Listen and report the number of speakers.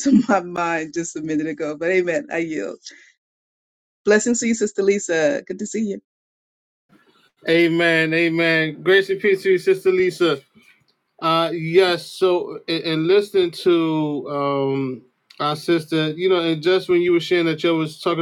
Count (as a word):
two